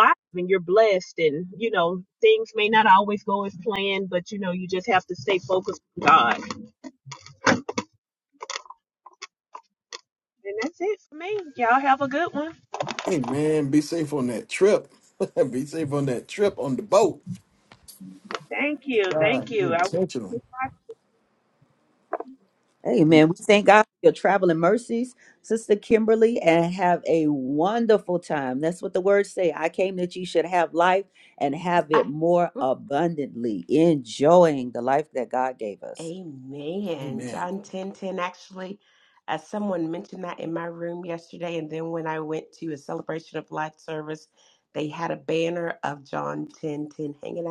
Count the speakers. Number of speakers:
4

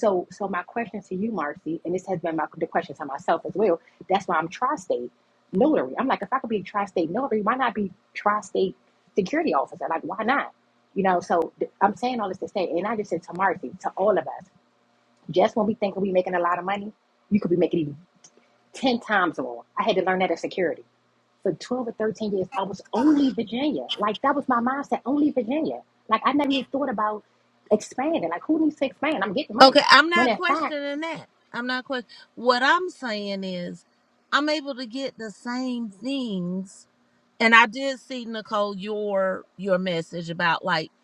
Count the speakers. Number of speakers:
2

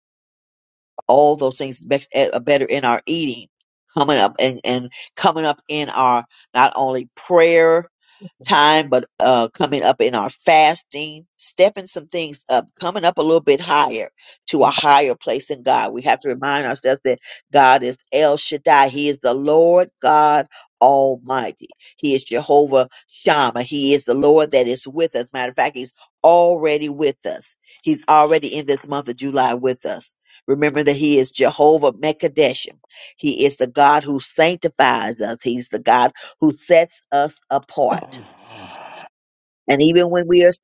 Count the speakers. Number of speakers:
1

